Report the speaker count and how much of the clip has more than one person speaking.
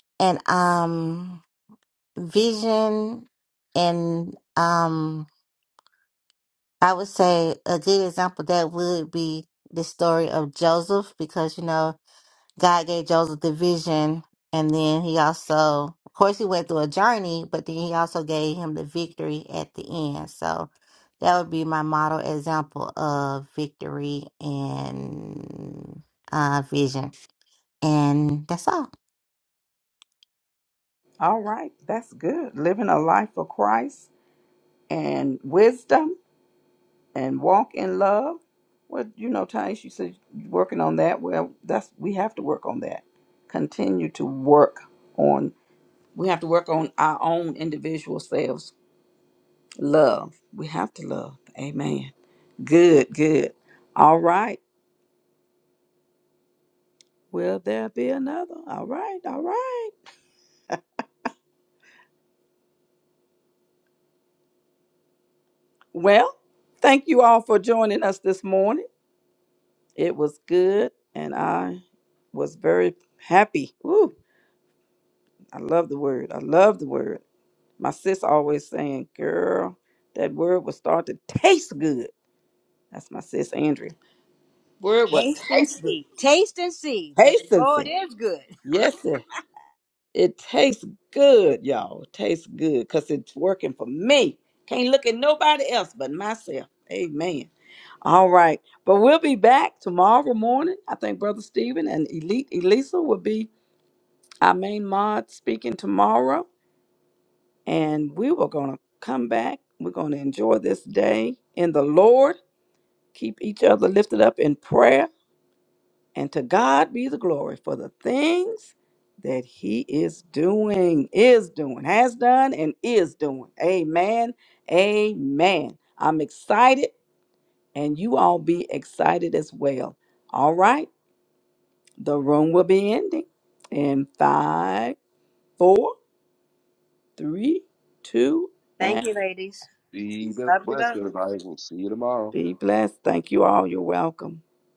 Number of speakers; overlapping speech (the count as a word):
four, about 1%